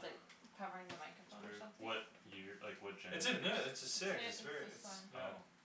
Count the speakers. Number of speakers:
3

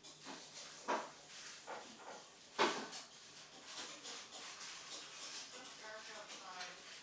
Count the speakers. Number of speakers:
1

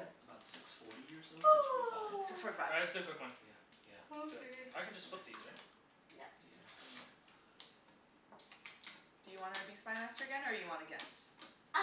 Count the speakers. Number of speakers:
4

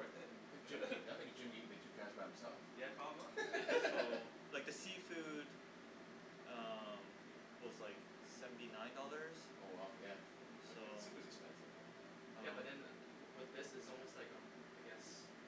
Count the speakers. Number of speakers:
3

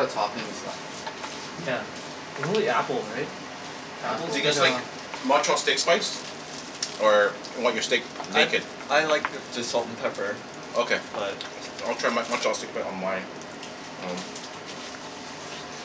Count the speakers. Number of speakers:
4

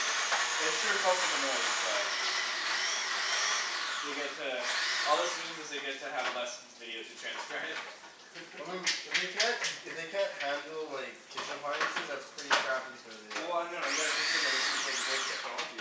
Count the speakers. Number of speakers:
2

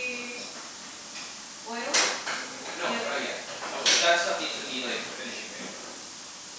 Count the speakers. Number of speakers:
2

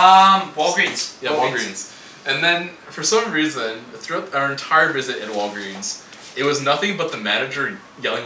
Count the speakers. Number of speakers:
2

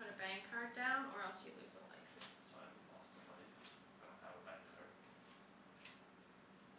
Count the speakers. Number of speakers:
2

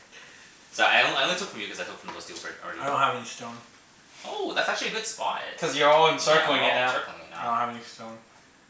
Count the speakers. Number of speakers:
3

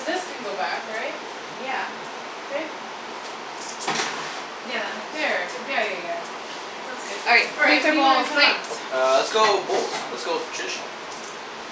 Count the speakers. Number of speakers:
3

